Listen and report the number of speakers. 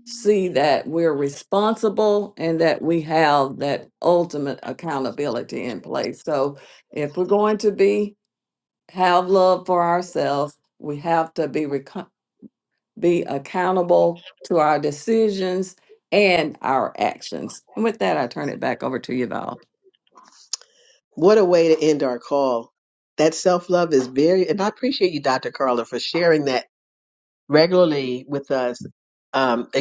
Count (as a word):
two